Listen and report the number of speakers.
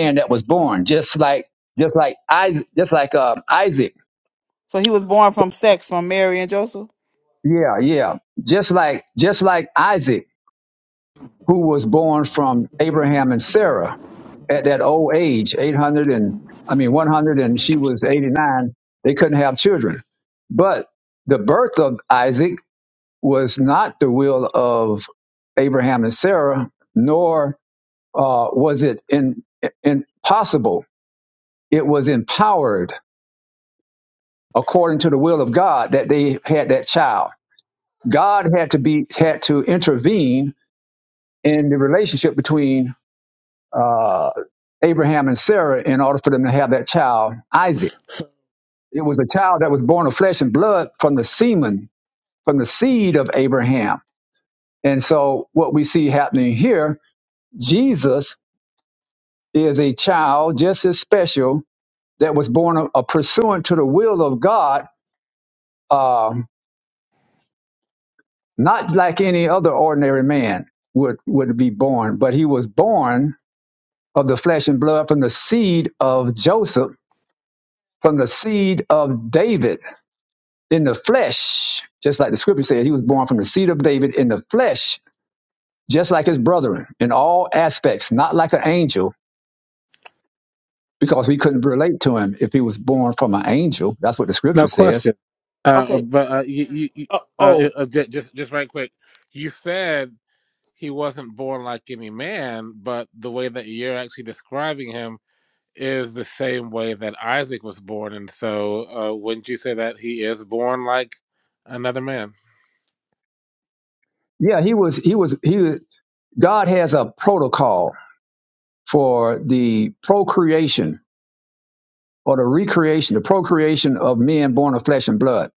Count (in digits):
3